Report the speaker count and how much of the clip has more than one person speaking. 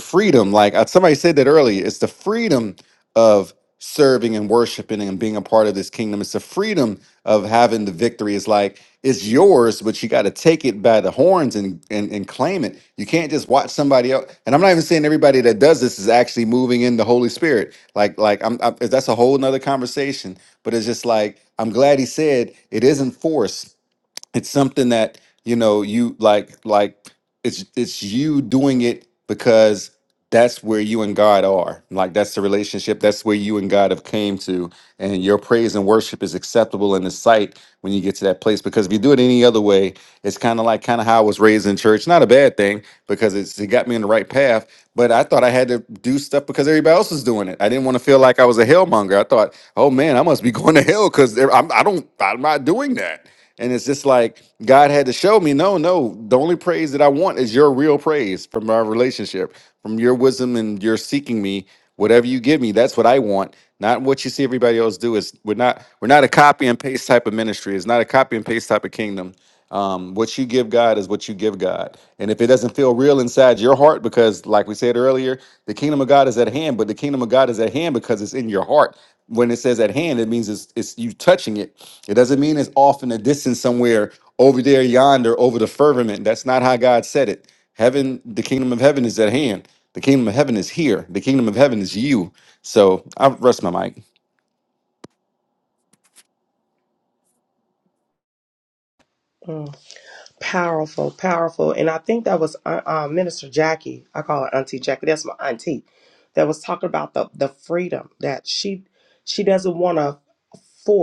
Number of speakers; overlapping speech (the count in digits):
2, no overlap